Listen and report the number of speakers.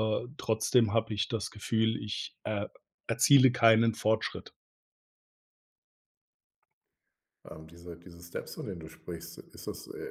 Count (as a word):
two